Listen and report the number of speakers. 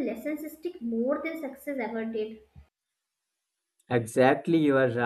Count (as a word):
two